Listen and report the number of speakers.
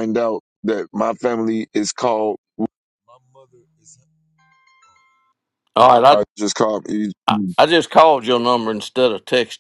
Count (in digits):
2